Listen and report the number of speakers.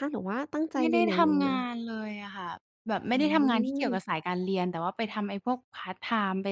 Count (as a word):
two